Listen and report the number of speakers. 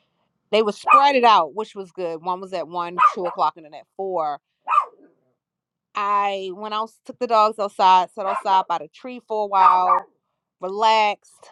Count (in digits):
1